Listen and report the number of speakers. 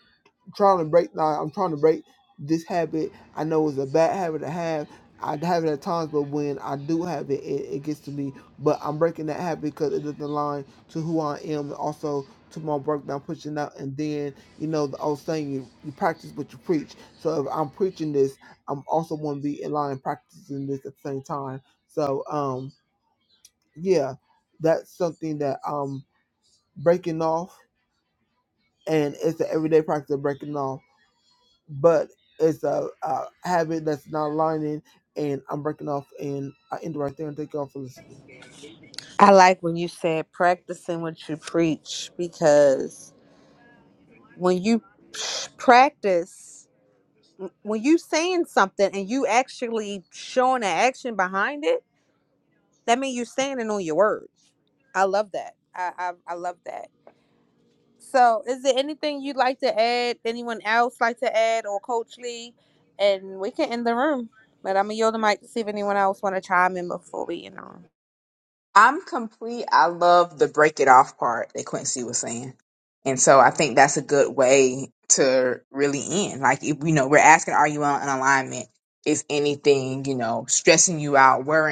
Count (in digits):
3